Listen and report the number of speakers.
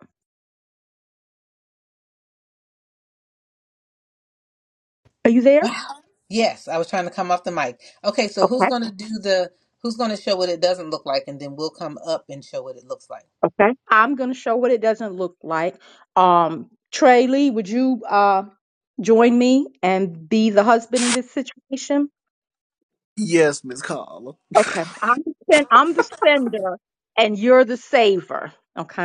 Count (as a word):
three